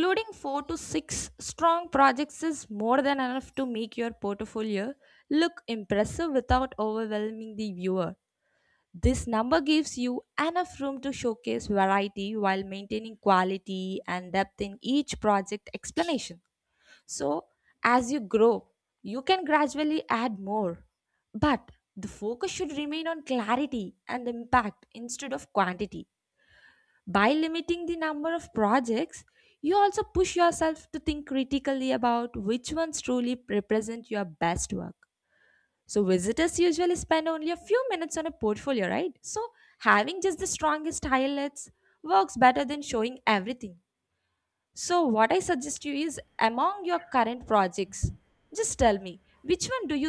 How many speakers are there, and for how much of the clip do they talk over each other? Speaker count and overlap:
1, no overlap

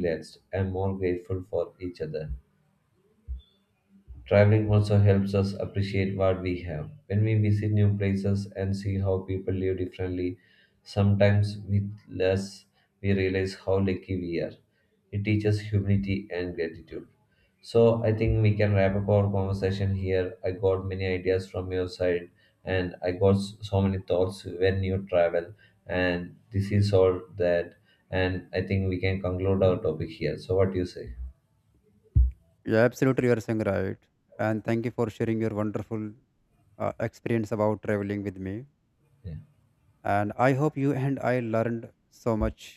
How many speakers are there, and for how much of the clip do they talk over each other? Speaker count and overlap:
2, no overlap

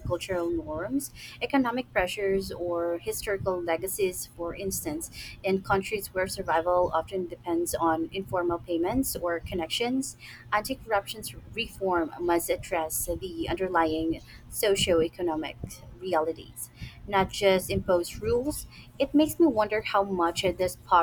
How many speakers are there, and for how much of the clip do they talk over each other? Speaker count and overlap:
1, no overlap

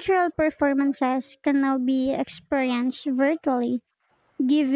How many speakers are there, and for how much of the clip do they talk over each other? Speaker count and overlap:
1, no overlap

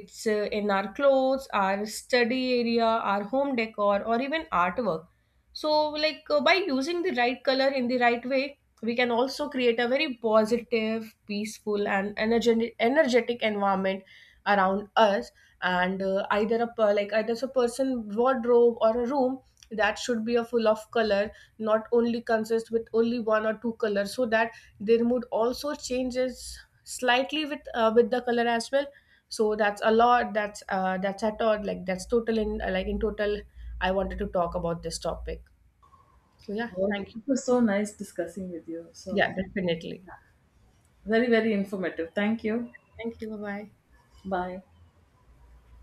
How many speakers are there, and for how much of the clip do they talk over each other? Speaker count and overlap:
2, about 1%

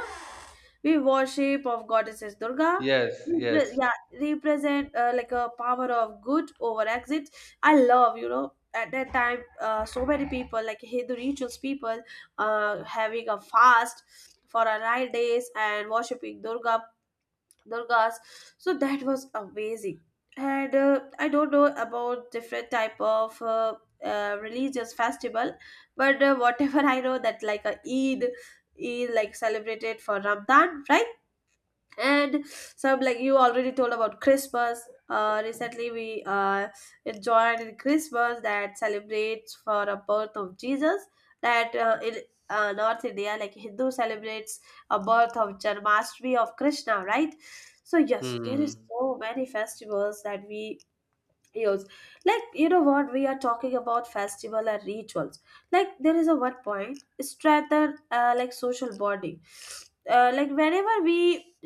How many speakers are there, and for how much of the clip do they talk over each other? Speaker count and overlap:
2, about 2%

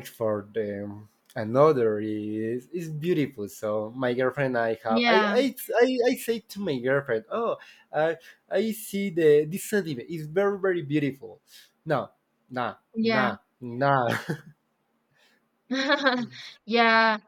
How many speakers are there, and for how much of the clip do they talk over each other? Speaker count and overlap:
2, about 5%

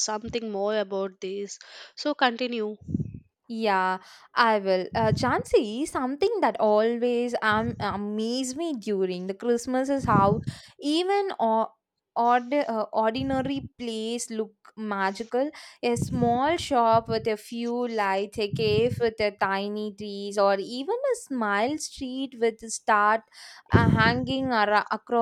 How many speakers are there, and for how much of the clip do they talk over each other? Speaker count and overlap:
2, no overlap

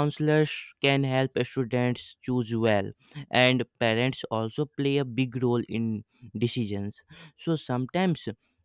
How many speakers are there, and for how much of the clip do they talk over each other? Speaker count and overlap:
1, no overlap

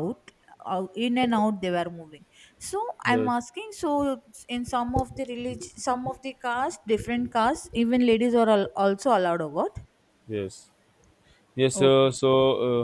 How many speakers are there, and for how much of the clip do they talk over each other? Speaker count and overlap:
2, about 4%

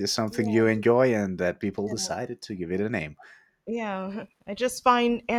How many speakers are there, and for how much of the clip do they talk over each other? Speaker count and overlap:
2, about 9%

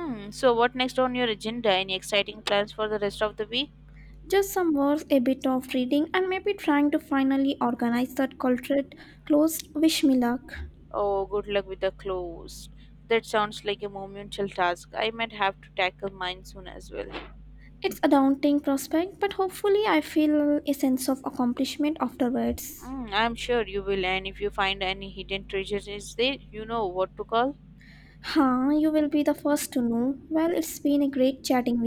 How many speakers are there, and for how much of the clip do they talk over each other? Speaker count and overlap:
2, no overlap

